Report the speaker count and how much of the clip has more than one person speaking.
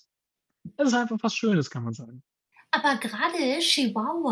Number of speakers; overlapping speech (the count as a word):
two, no overlap